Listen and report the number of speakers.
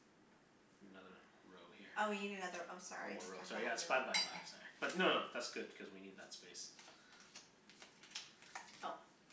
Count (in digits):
2